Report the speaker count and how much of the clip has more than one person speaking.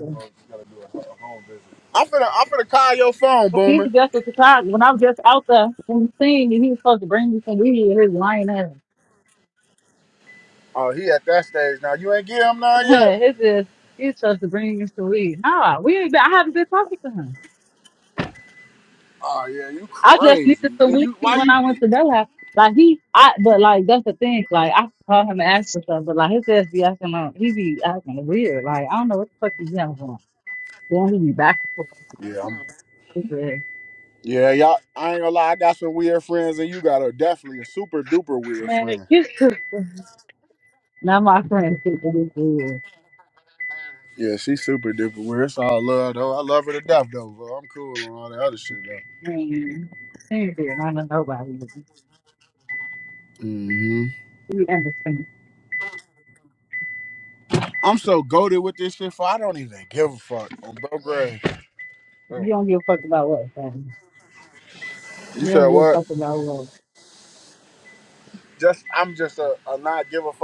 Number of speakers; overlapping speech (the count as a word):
two, about 4%